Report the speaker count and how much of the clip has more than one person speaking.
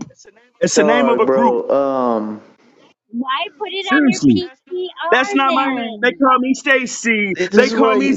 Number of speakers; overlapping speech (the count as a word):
three, about 39%